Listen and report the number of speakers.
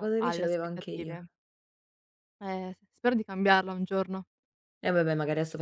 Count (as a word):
two